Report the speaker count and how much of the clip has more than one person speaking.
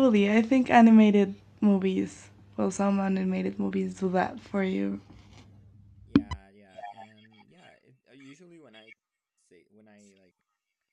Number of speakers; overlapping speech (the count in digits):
2, no overlap